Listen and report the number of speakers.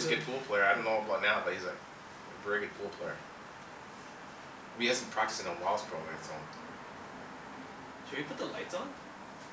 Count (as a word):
two